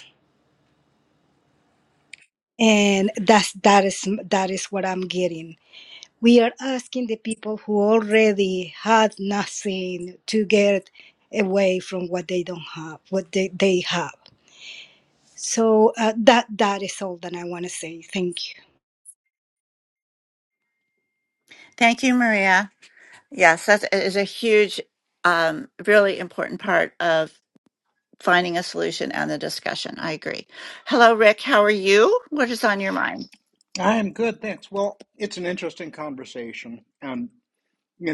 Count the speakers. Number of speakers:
3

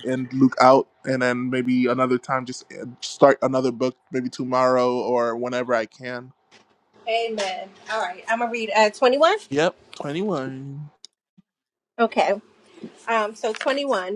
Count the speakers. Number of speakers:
2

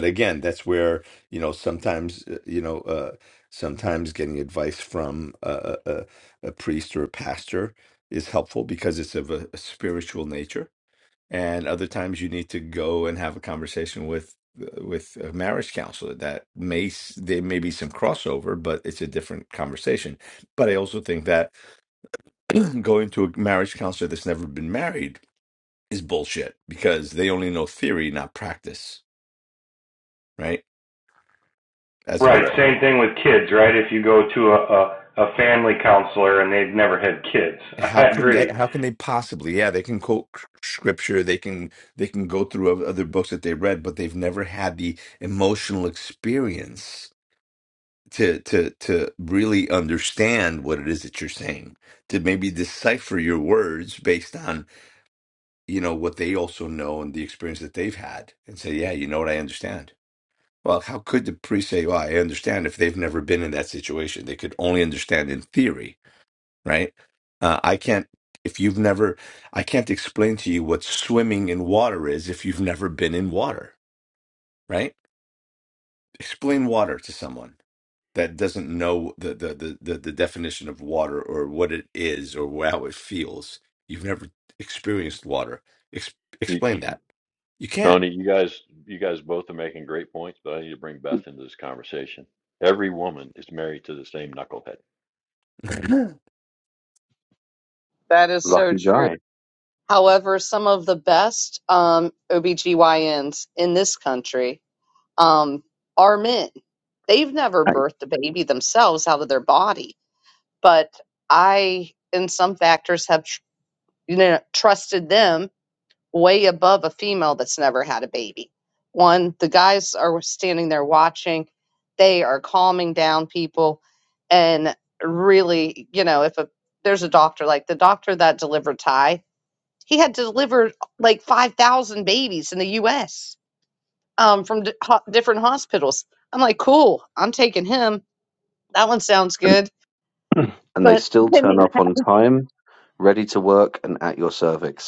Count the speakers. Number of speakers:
5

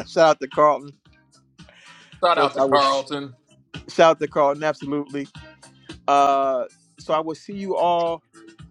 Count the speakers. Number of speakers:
2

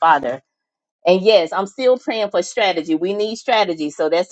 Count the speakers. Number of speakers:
1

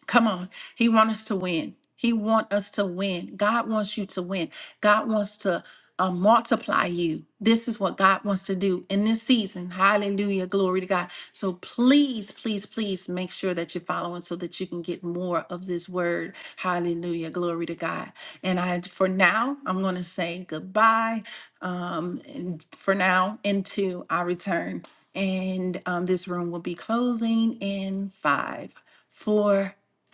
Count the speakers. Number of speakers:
1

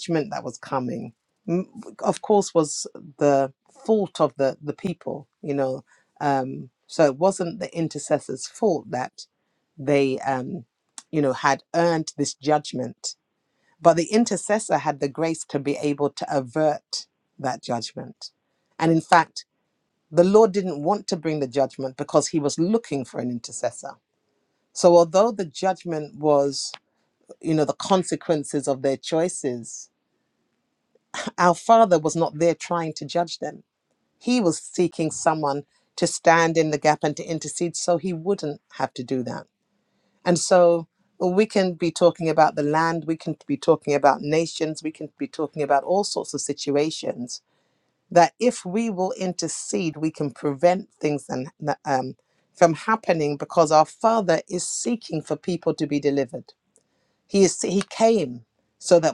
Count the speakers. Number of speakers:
1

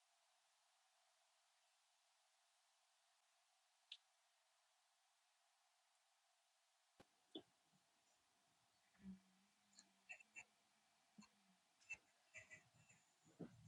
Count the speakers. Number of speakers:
0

